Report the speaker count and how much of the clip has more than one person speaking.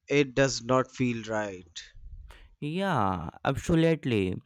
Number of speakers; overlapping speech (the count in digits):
2, no overlap